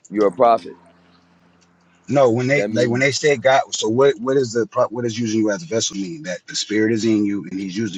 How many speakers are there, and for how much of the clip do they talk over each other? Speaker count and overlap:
two, about 6%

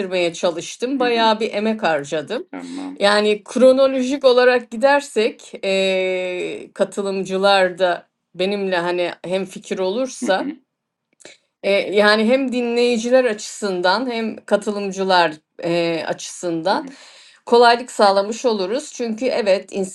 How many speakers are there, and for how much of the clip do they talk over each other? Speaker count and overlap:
two, about 4%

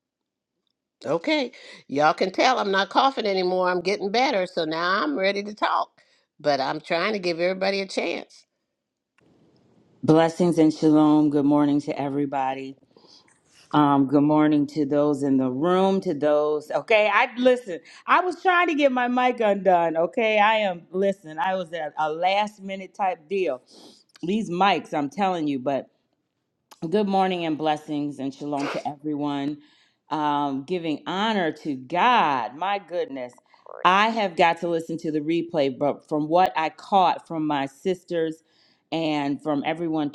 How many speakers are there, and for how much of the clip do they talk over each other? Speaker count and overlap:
two, no overlap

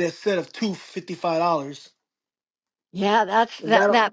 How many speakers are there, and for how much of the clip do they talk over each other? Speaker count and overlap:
two, about 8%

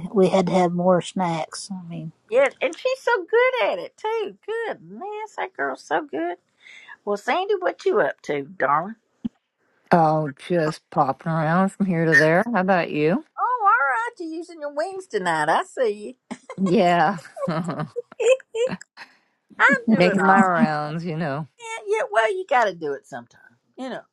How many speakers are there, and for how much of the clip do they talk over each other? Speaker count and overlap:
three, about 2%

